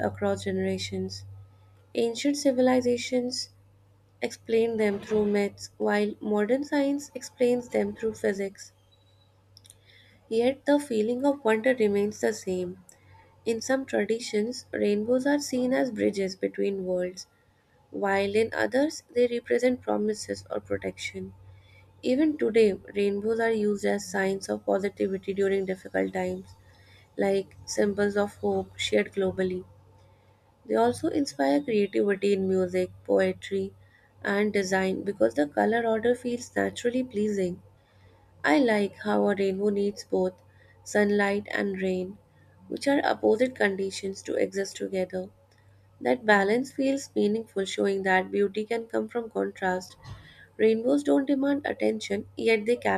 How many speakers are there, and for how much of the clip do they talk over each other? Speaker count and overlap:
1, no overlap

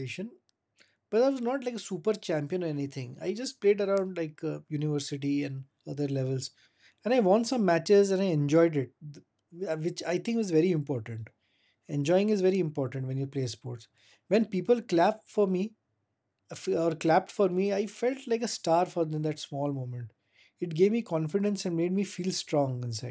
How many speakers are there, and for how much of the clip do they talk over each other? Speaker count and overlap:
1, no overlap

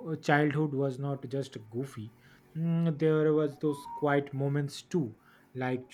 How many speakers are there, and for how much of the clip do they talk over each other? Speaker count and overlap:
1, no overlap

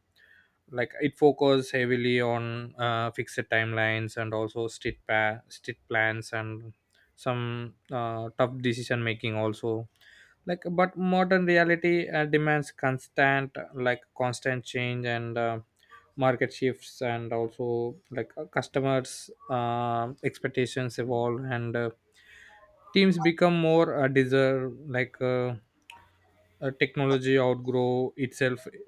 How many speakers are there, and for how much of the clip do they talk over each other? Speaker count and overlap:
1, no overlap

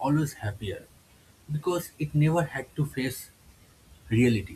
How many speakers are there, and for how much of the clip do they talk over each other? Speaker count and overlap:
1, no overlap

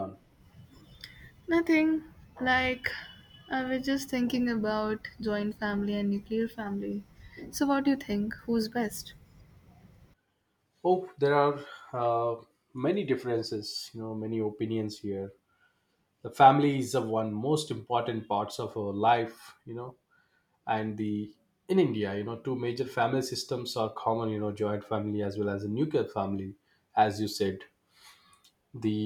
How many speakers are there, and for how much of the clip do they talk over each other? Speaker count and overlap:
2, no overlap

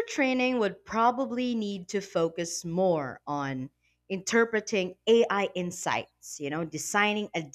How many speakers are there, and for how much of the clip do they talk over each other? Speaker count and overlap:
1, no overlap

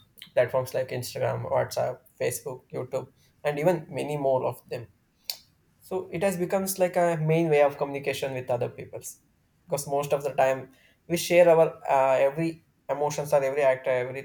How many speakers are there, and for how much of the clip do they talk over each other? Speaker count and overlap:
1, no overlap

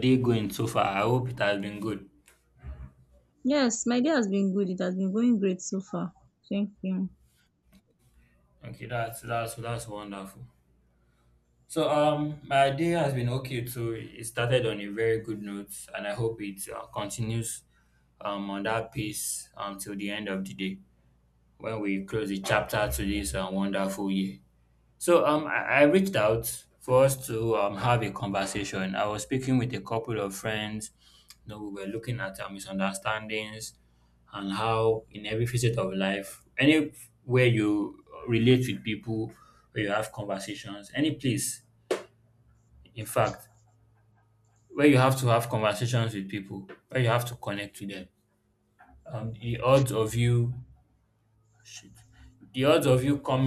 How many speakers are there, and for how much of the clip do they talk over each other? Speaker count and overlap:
2, no overlap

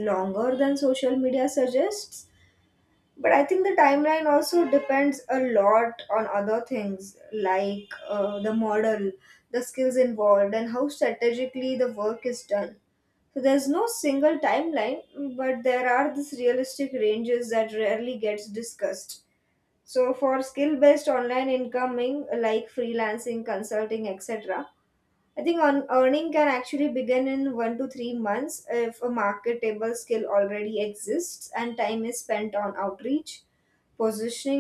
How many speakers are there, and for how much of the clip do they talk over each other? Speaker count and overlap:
1, no overlap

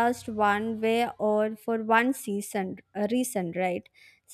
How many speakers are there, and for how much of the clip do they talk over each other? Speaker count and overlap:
1, no overlap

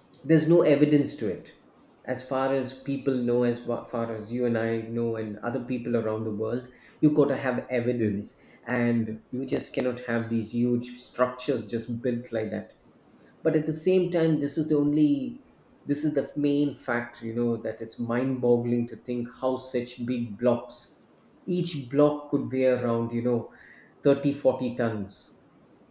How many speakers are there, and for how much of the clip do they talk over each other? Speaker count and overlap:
1, no overlap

